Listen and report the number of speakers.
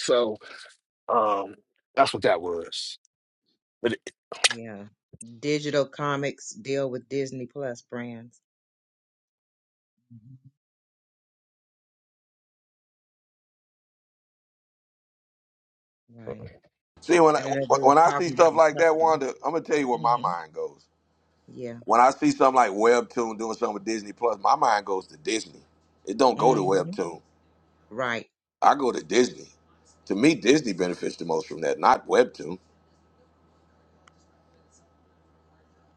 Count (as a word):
three